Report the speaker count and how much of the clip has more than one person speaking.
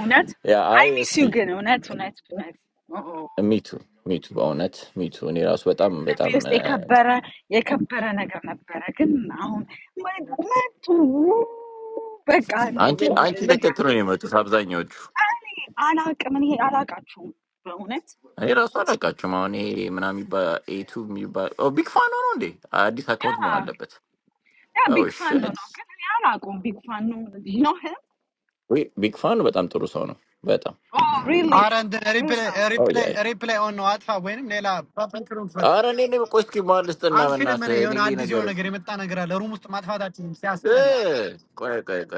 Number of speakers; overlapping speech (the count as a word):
three, about 14%